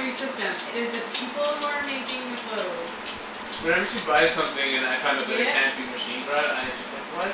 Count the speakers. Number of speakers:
2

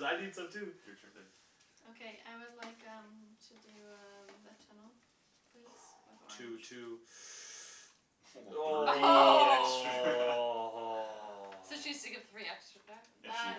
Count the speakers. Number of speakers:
4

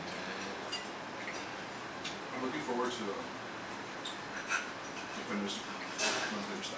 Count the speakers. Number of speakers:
1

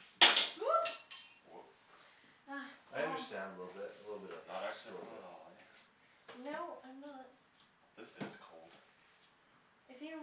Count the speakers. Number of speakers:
3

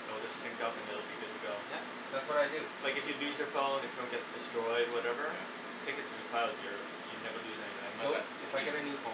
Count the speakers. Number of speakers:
2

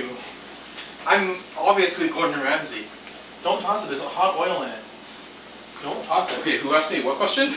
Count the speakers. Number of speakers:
3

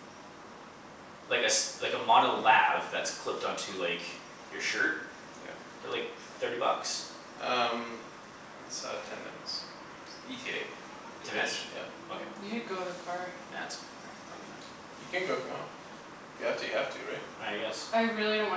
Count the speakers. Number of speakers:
3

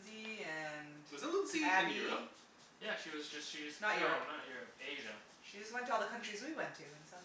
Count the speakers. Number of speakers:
3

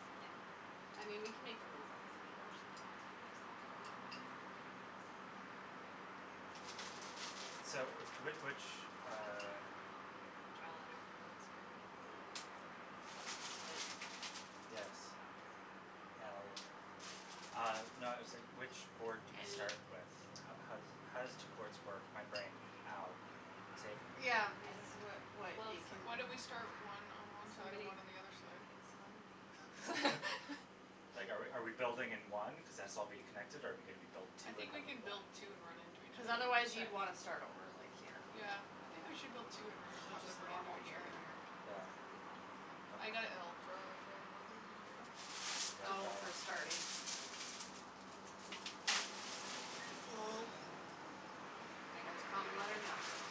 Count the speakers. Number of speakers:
4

